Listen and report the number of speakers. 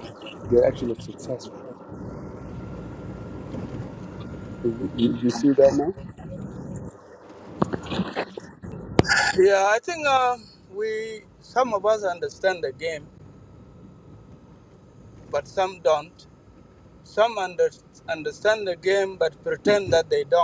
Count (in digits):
2